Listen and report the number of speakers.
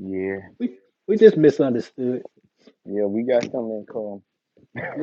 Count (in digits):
2